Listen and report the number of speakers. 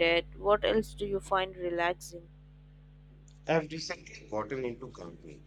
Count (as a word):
two